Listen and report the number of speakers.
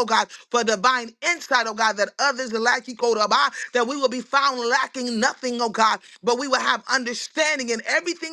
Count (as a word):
one